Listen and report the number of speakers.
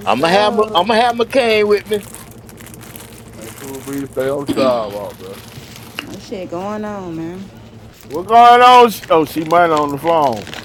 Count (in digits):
4